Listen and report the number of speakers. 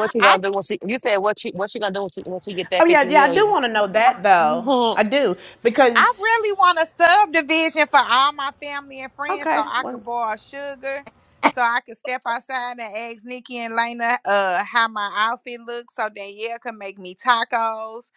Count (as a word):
three